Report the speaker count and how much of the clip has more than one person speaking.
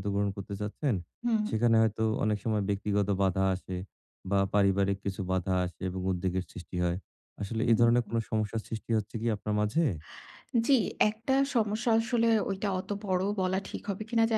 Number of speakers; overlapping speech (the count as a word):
two, about 1%